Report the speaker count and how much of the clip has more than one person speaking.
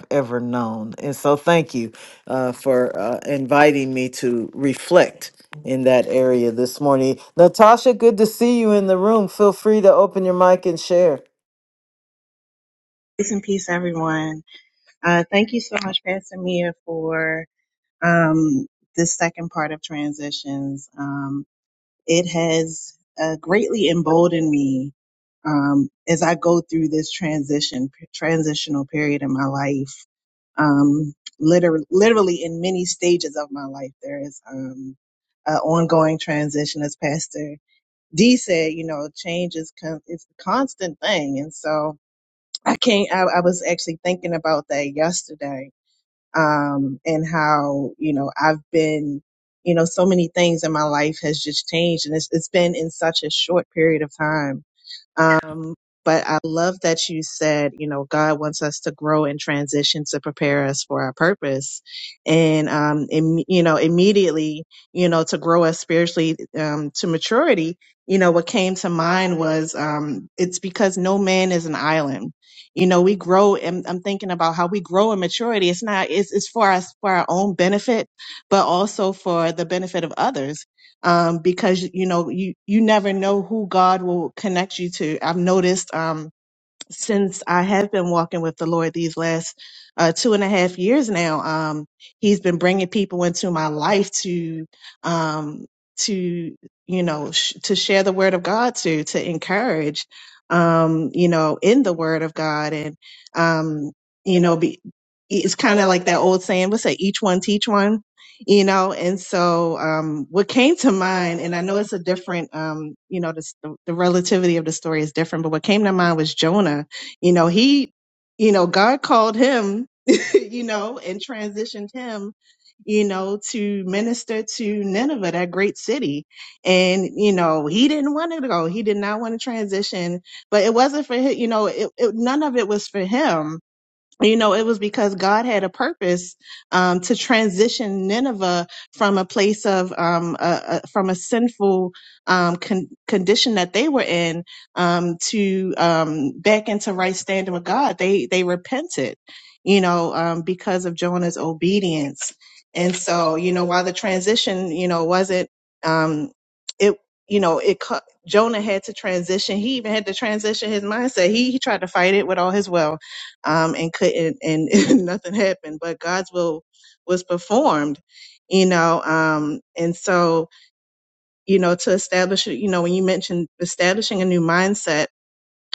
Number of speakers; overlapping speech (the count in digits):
2, no overlap